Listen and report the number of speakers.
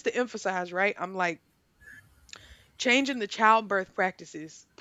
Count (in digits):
1